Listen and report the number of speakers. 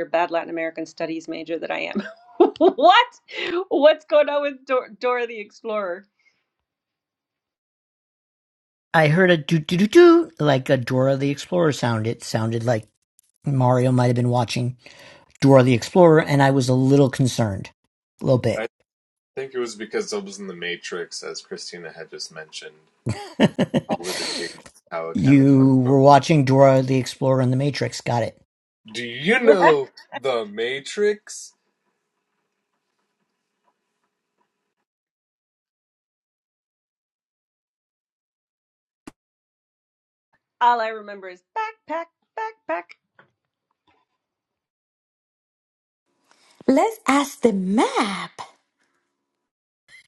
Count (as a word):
four